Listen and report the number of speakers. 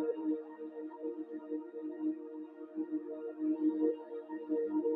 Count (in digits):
0